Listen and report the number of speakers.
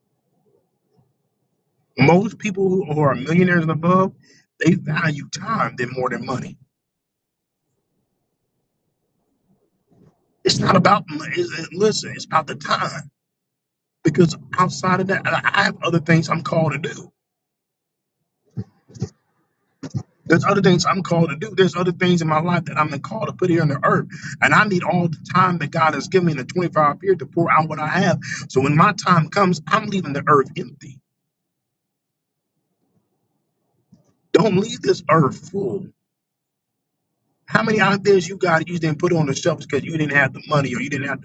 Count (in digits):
1